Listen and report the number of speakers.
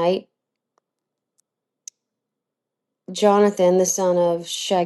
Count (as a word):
one